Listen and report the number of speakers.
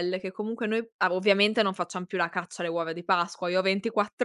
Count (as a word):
one